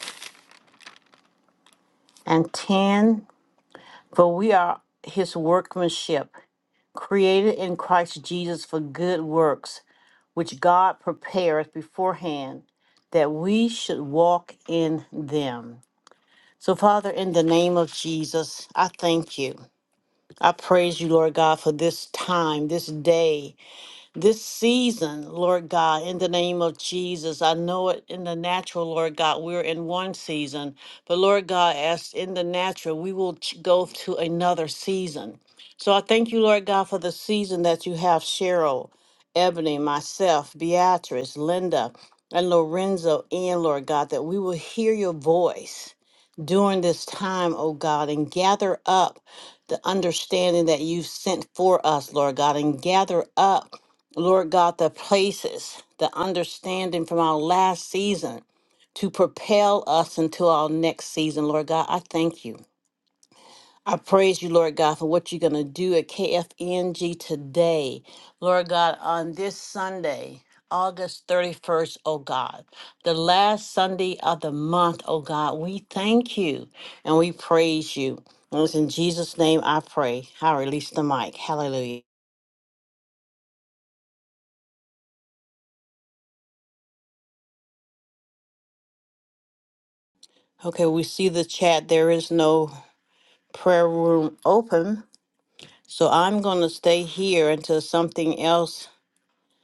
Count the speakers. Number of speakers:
1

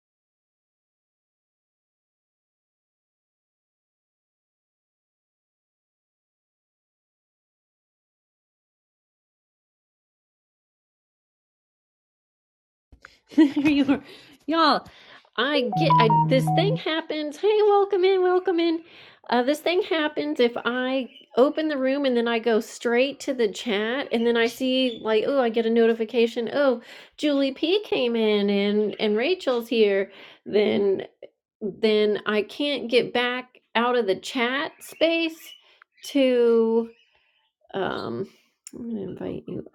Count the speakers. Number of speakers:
1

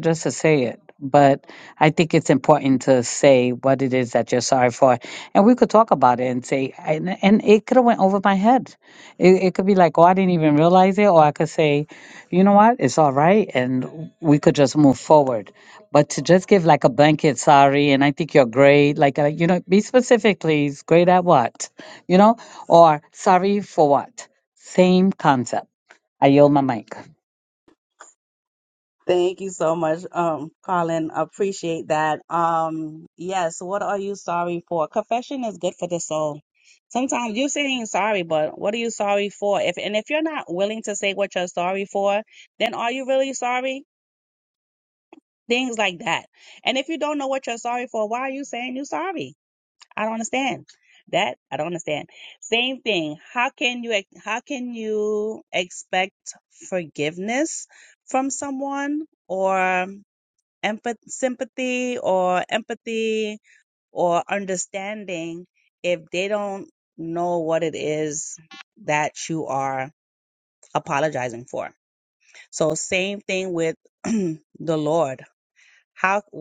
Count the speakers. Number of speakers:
2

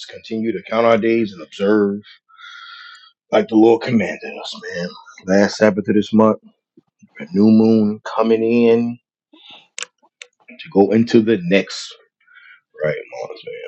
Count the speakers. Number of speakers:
1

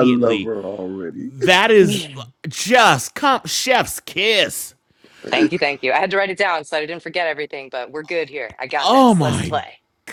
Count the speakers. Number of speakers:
3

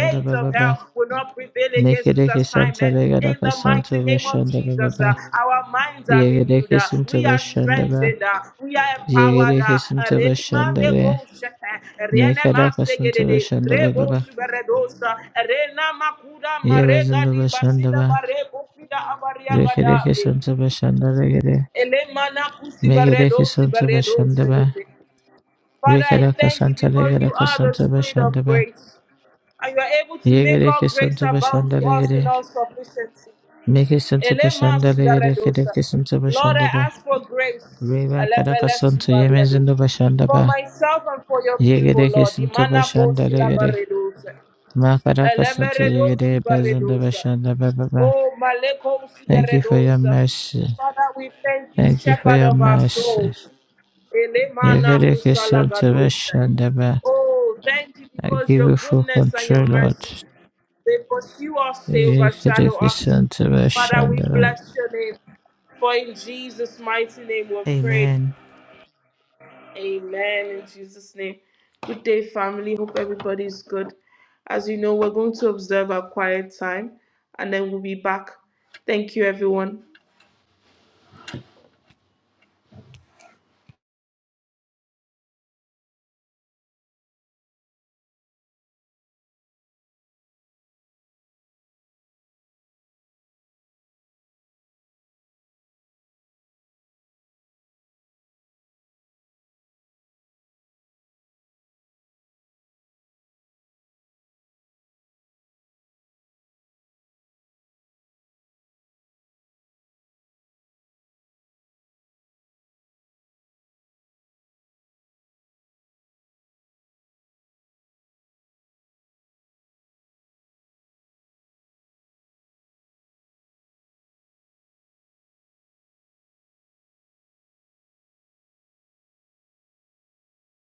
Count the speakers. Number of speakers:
2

